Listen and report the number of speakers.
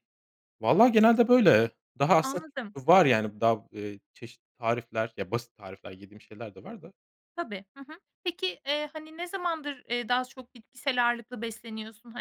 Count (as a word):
two